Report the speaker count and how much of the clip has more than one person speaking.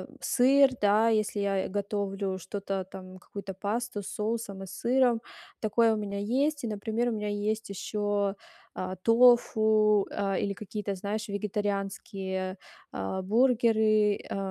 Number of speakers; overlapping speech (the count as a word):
one, no overlap